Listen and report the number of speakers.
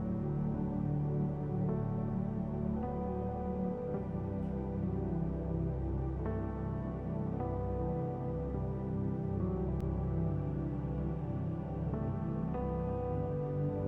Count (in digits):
0